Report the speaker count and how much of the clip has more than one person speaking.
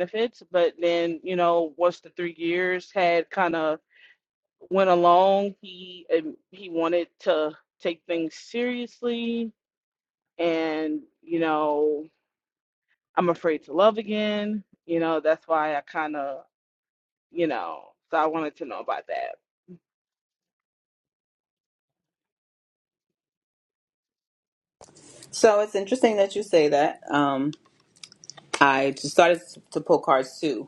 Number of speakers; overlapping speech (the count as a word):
two, no overlap